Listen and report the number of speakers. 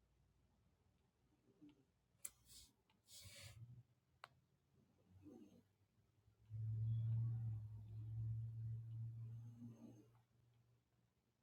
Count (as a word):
zero